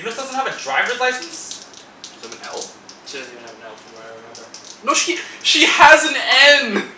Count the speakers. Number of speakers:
3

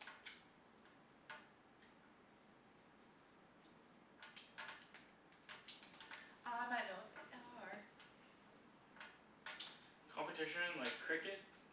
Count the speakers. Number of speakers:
2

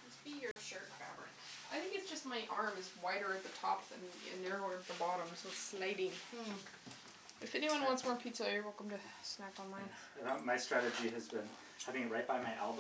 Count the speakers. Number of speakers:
3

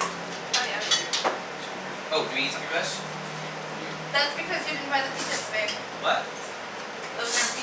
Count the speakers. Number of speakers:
2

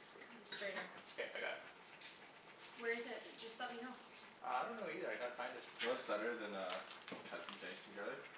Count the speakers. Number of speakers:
3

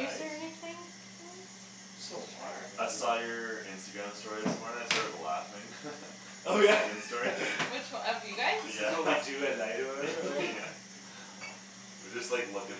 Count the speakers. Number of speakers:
4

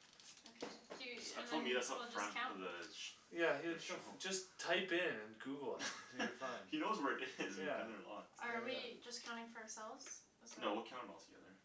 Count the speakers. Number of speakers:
3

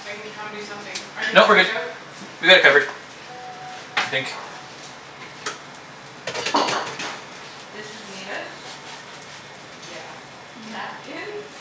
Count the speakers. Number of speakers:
3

